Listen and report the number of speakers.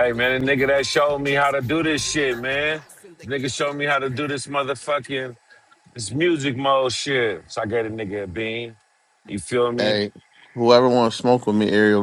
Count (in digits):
2